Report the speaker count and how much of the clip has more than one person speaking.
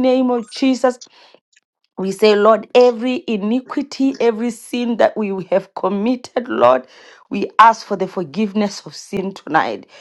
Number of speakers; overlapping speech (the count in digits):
1, no overlap